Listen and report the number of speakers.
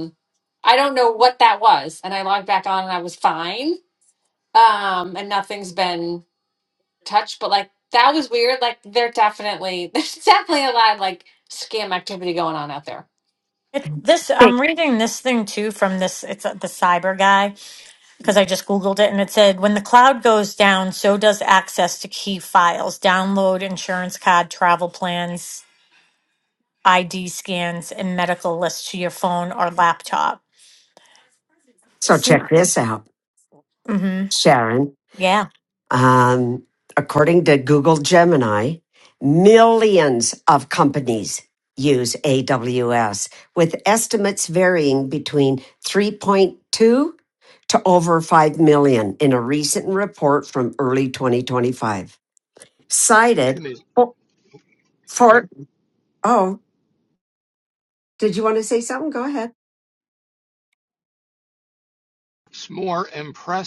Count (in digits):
4